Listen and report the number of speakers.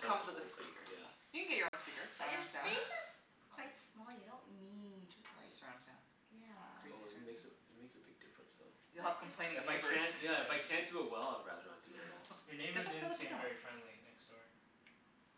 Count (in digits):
4